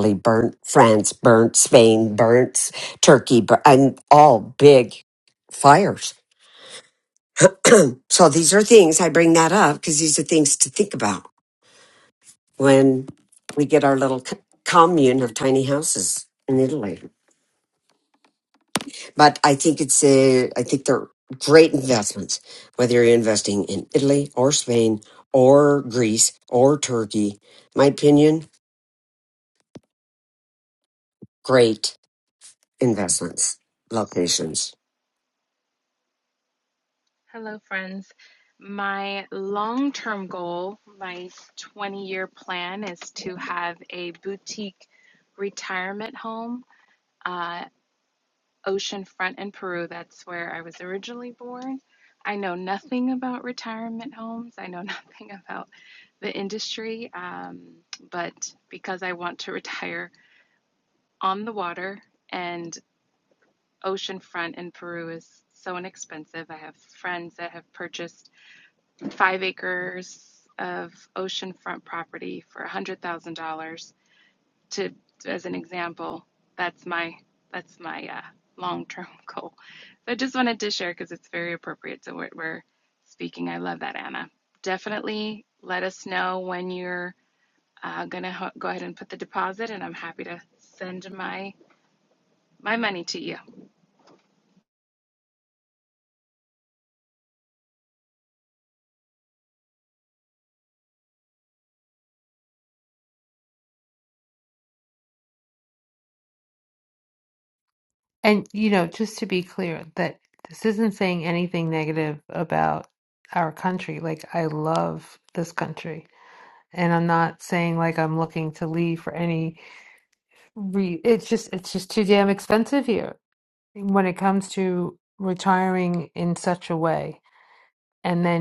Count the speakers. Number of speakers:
3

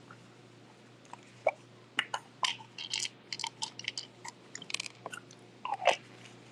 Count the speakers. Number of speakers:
0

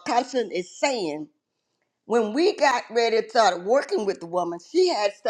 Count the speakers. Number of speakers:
1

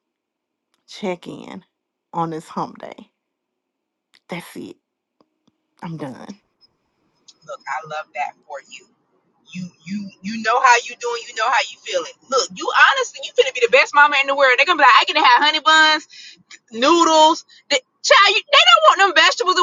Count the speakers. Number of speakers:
2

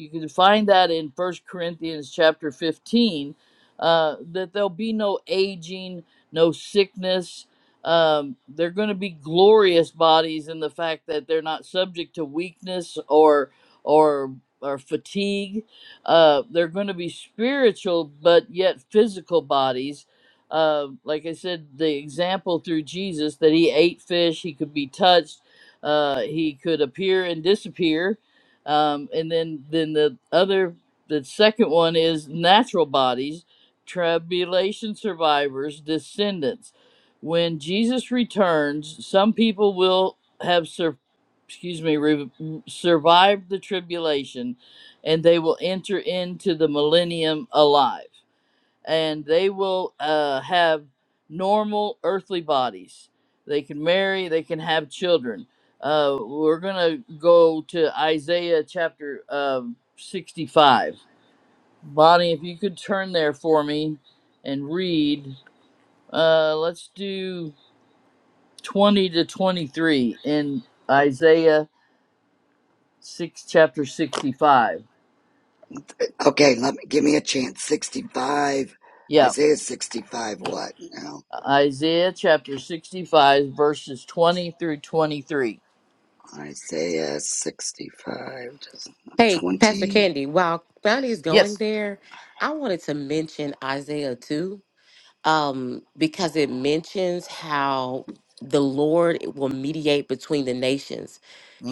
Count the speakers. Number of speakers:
3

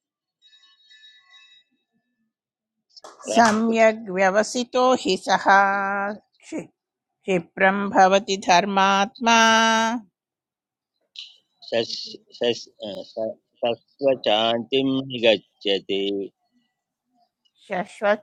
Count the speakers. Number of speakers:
2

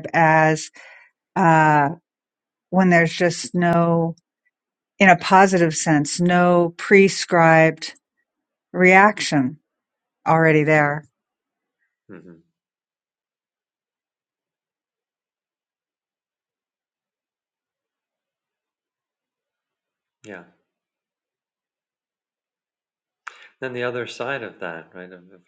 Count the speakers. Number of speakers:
2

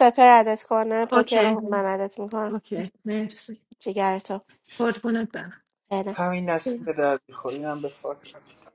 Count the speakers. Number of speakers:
3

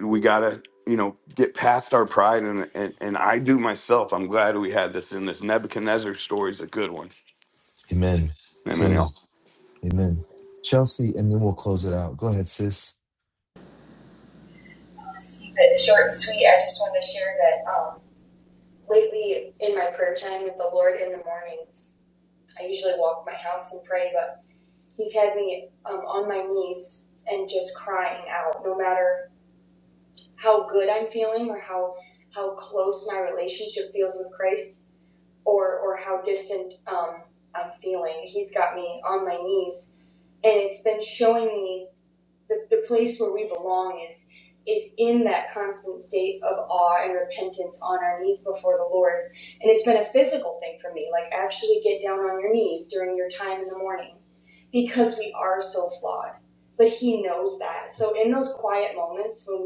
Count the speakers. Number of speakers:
3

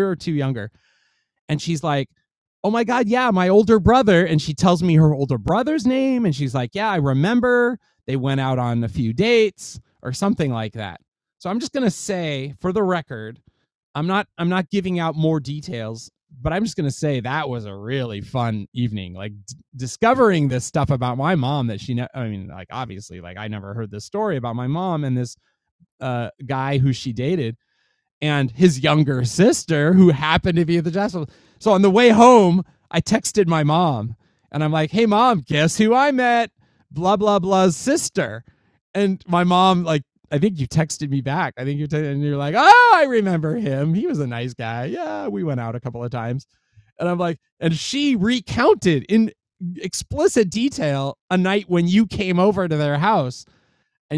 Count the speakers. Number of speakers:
1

